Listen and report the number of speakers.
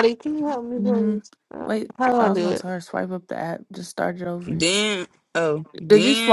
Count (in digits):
3